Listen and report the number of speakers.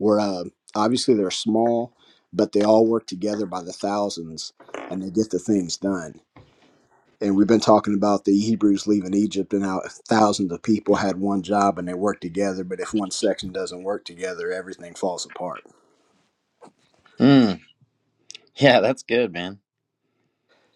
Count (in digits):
2